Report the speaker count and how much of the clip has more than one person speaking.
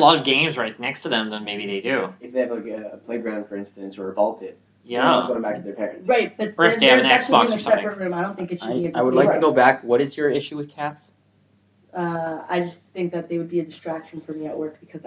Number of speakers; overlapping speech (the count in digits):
4, about 22%